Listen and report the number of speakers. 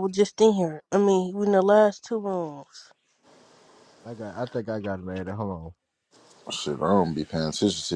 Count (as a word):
three